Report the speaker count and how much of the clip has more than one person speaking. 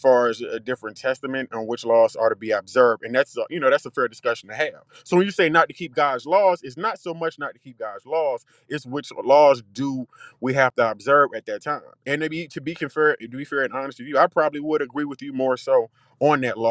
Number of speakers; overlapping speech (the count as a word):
one, no overlap